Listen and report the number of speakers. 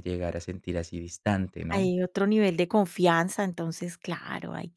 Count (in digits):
2